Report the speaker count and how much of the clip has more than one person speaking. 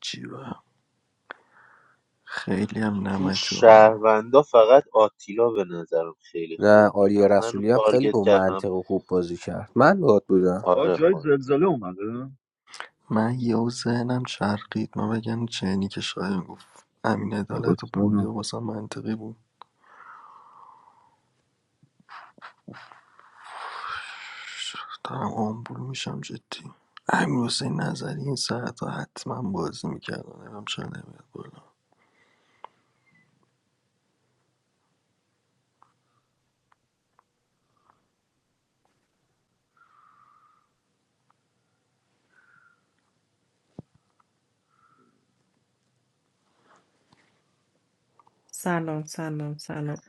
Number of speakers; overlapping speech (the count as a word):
five, about 8%